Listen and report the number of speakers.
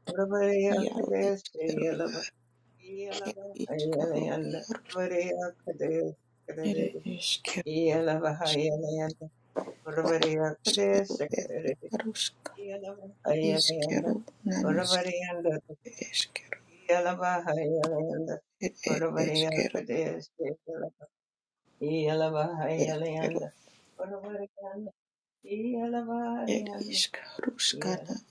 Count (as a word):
two